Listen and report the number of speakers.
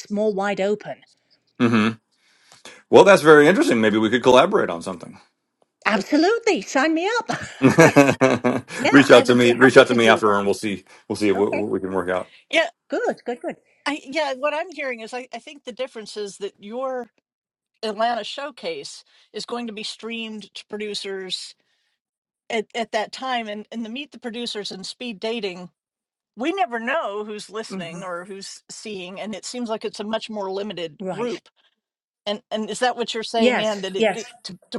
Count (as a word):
three